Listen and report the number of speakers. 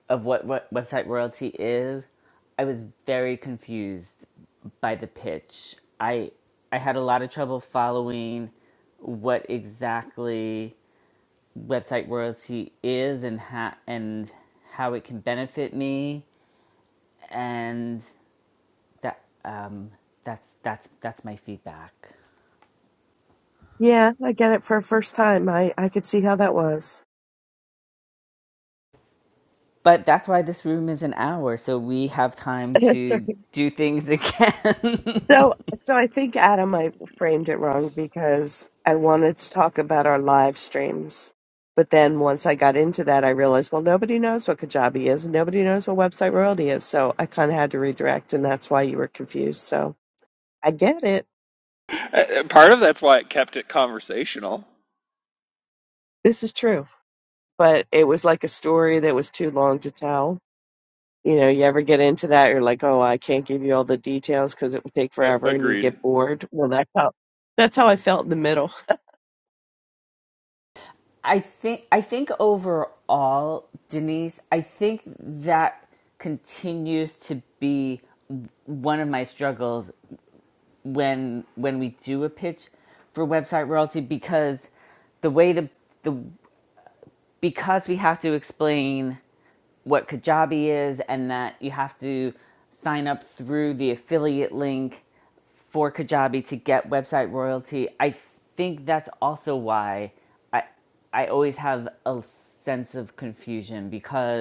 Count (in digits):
3